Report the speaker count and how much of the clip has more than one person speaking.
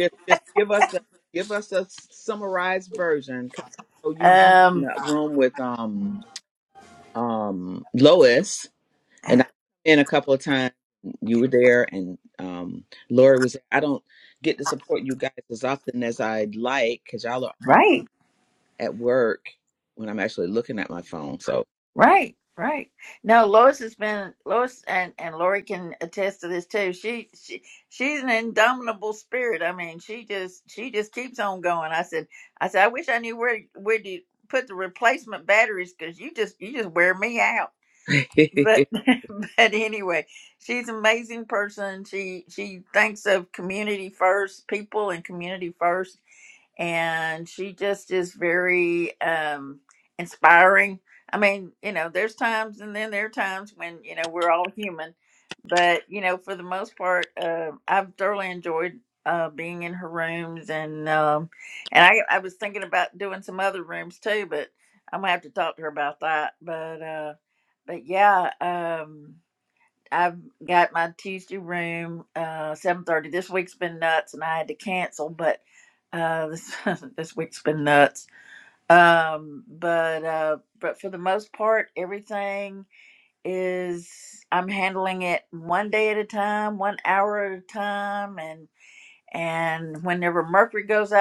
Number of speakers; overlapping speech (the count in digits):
2, under 1%